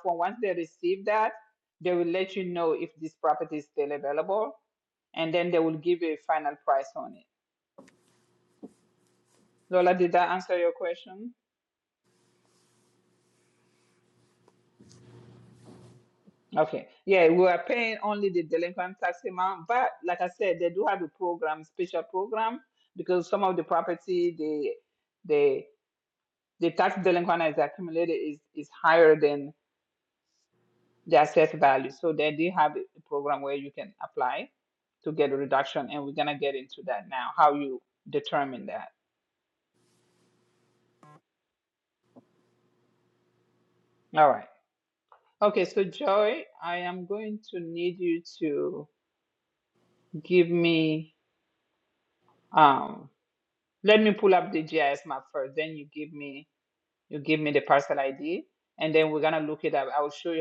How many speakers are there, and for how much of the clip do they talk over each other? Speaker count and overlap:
one, no overlap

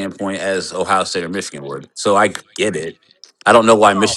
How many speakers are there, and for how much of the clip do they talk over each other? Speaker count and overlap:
one, no overlap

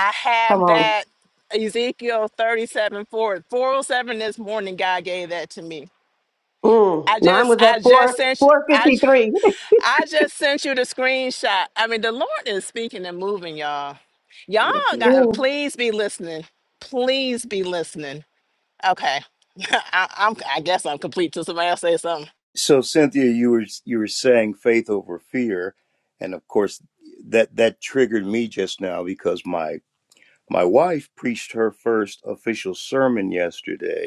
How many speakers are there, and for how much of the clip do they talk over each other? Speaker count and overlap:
three, about 9%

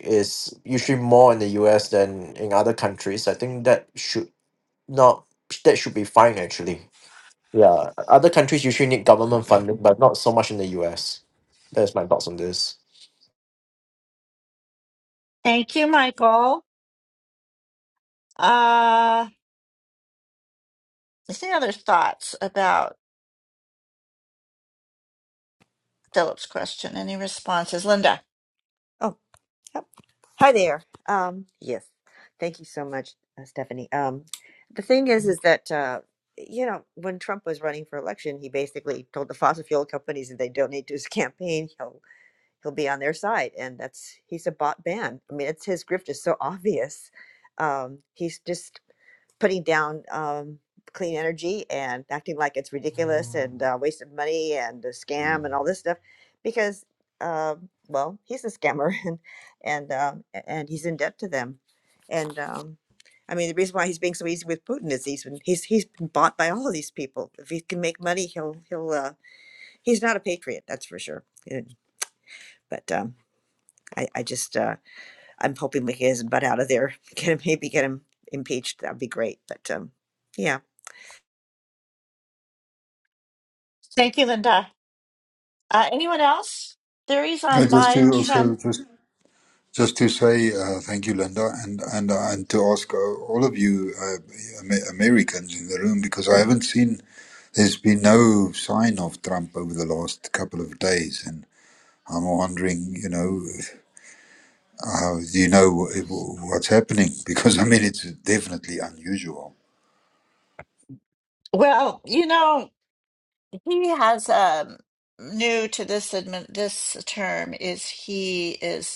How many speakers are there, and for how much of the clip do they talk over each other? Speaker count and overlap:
four, about 1%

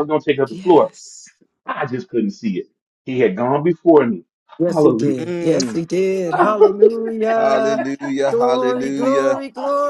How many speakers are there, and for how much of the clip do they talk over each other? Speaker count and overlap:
three, about 26%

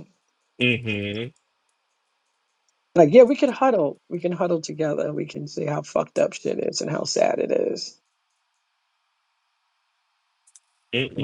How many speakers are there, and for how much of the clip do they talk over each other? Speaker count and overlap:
two, about 1%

